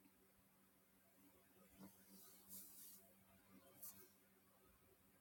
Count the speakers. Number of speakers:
zero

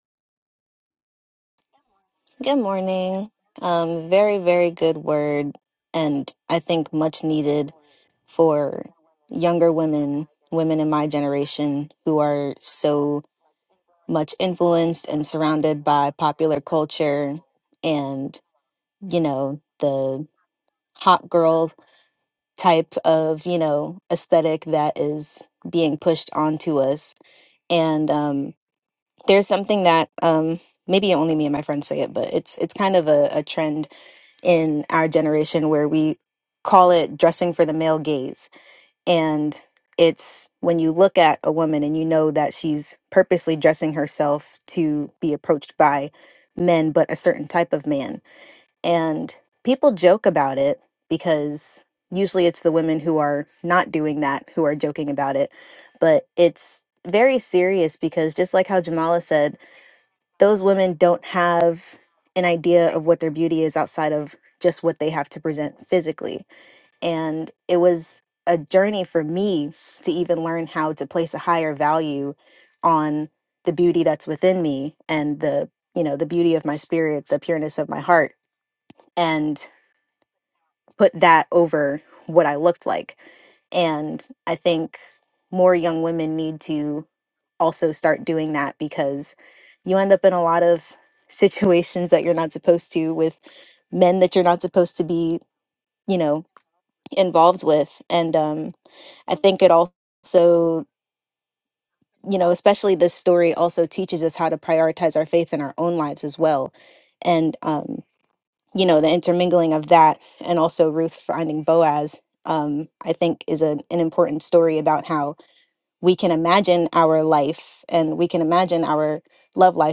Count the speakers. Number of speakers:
one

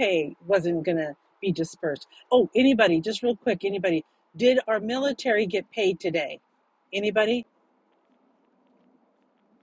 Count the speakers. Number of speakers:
one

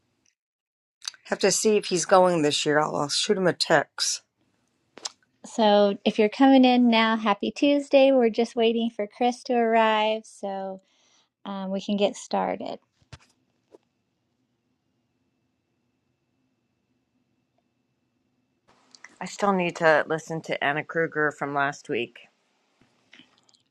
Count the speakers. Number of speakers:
three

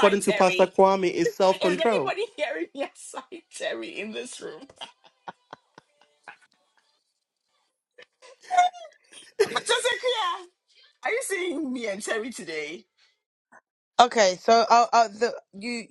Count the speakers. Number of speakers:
three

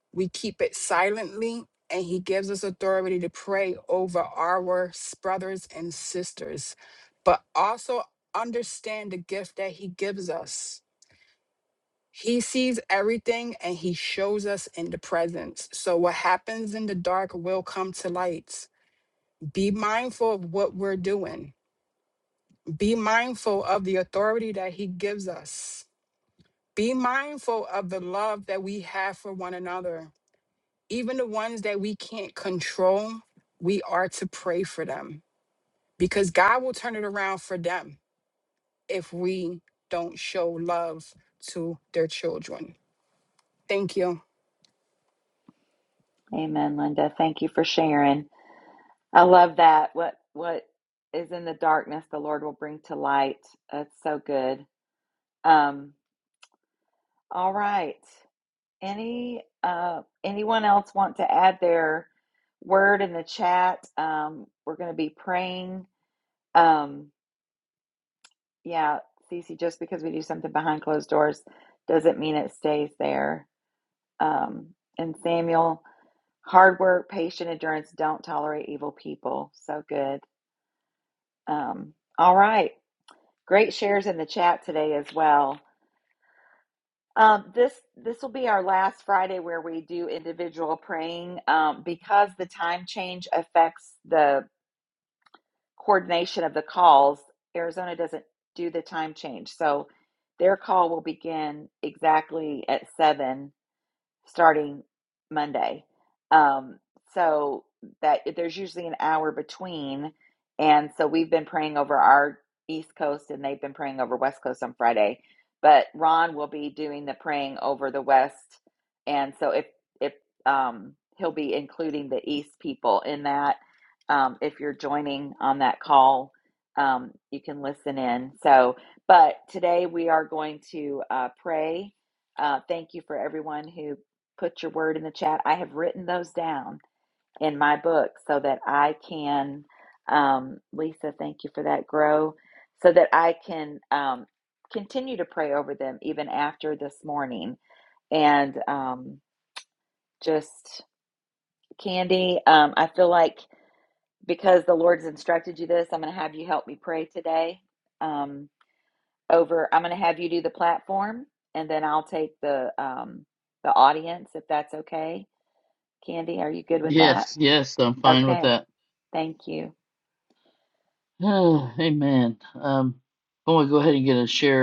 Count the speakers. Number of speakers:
three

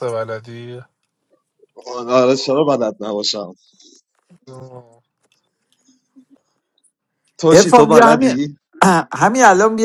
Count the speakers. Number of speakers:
three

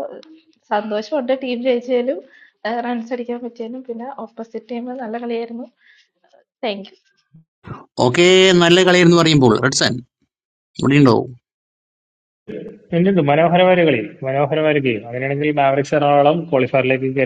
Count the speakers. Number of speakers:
three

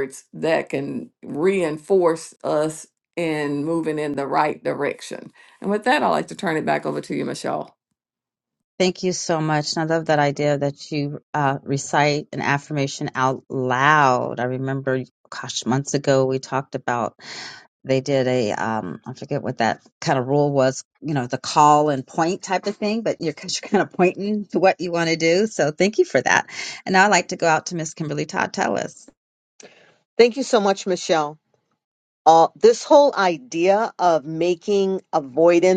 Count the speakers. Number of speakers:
three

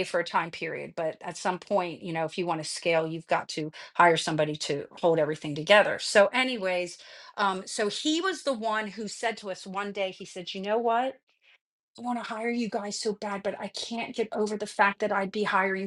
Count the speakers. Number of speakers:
one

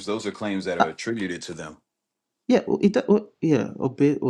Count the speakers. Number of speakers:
two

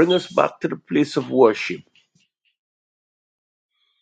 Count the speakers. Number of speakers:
one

